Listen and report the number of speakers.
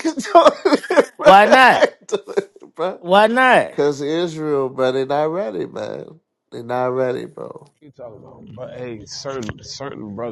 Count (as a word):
three